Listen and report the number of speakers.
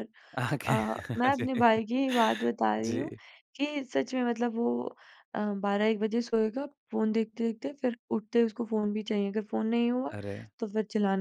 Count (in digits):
2